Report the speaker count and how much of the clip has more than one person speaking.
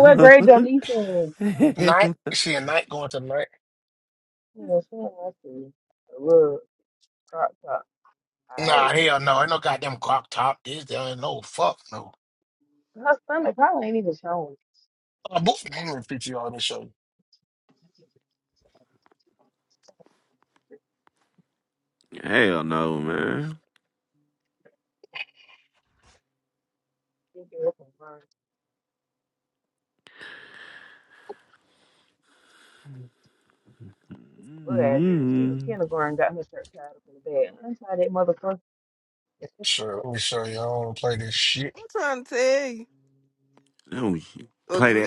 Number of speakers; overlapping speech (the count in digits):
4, about 5%